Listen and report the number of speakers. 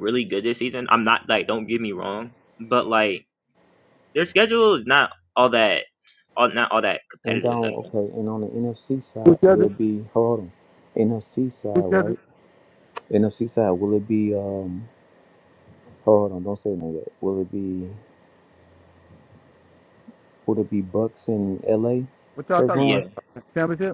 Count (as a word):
three